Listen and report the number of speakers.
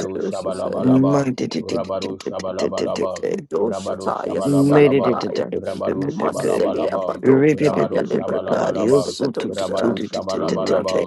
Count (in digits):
3